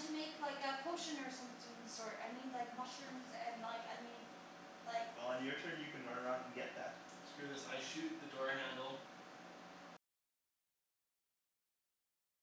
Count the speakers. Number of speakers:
3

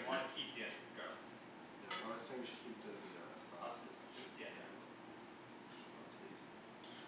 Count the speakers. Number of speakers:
2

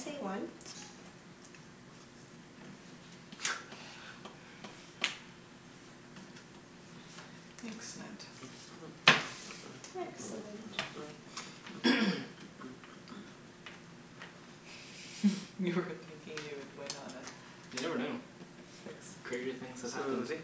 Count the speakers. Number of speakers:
3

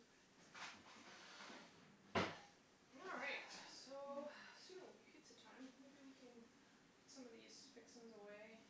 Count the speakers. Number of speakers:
1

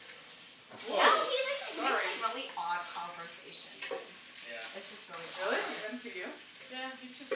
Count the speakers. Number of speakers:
3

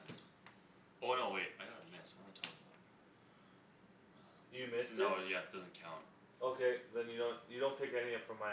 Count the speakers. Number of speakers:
2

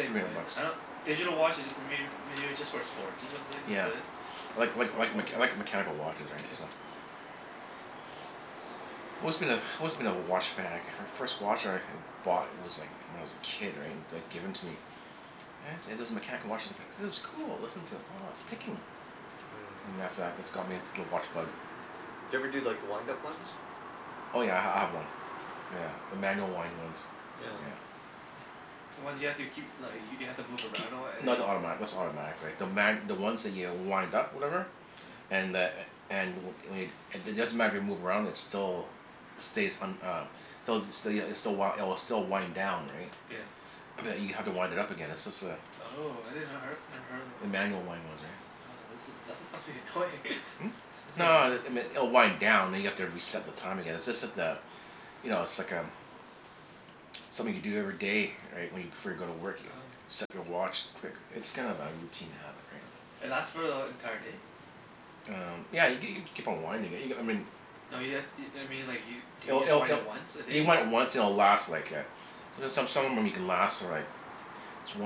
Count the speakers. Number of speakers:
3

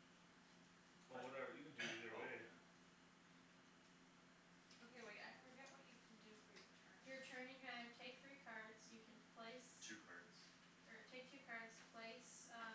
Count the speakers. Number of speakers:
4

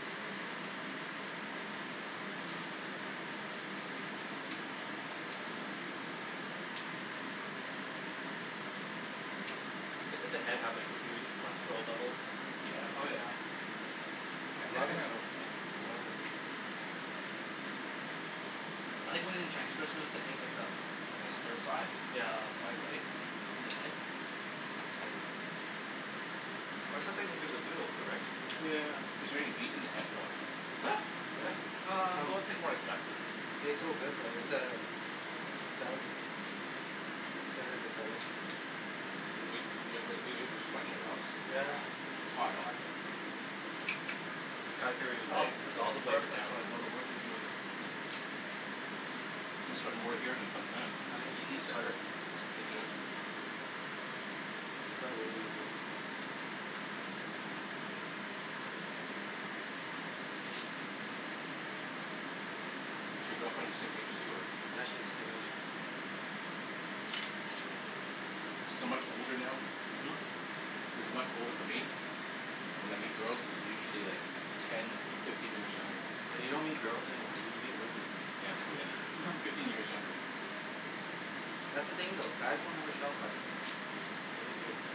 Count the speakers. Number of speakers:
4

